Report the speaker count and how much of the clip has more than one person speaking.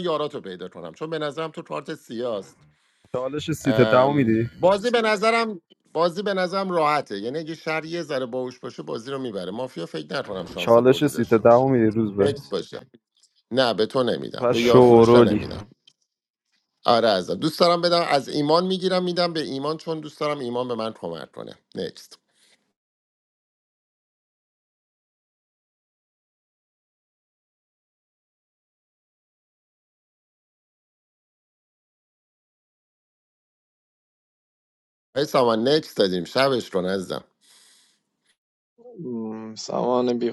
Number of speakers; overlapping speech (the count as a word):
three, about 8%